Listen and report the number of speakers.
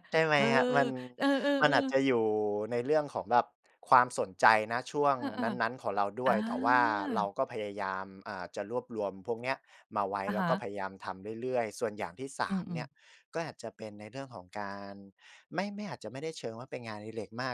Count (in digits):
2